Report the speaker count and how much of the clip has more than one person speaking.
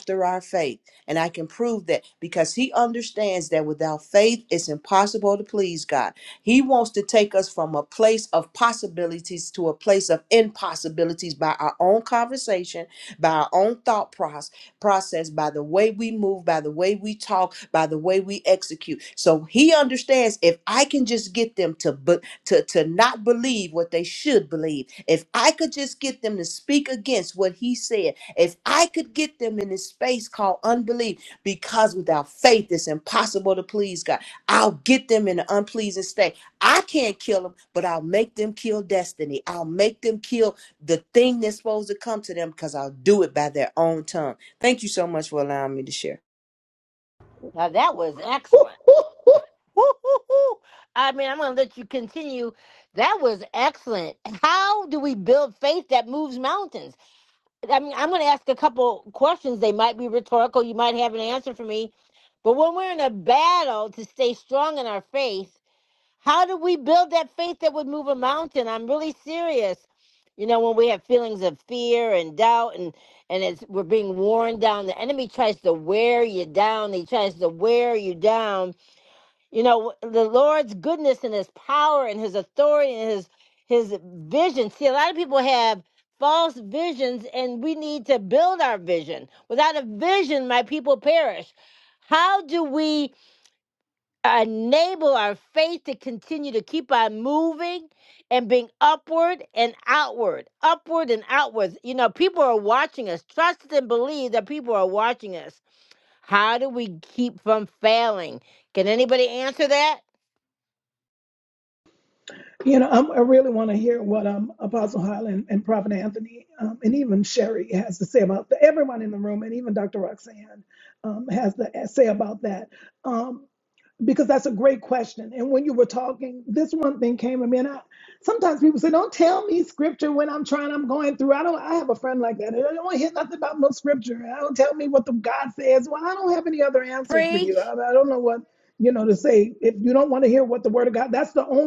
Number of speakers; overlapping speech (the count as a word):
three, under 1%